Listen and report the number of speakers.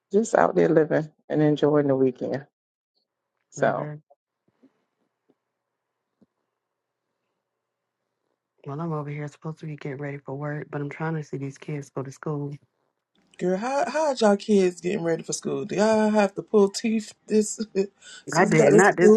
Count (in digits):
3